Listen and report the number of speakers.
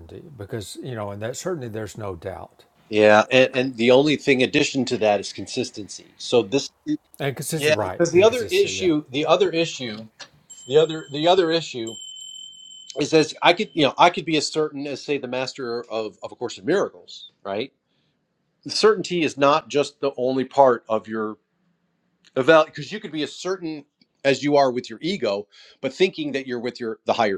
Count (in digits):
2